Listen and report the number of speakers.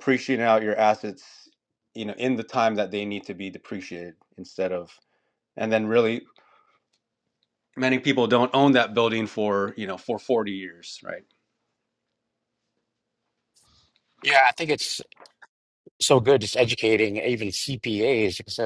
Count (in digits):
2